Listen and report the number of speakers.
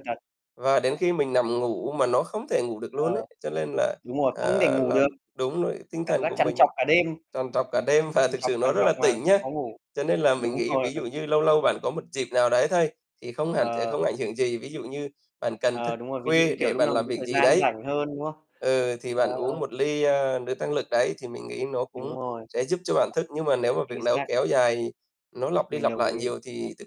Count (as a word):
two